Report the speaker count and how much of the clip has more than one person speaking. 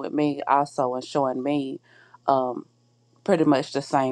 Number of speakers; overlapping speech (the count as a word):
one, no overlap